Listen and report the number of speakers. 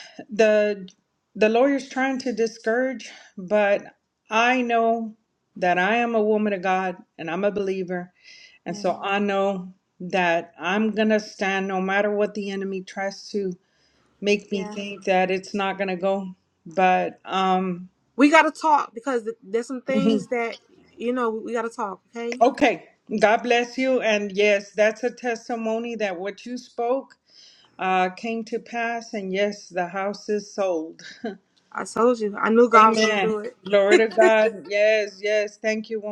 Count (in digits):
2